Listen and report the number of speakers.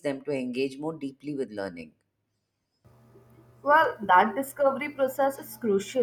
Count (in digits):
2